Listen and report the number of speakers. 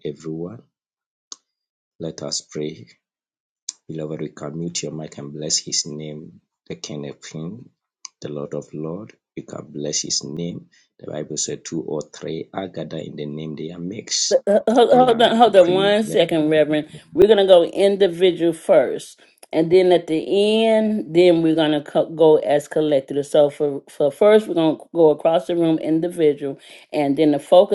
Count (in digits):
2